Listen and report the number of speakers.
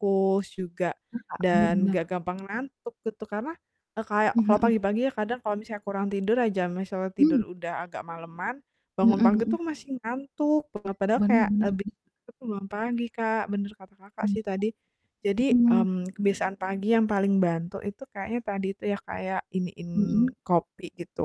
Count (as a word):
two